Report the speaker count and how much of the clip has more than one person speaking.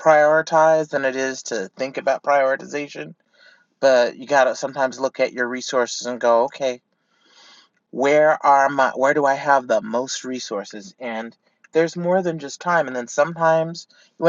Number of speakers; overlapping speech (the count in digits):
1, no overlap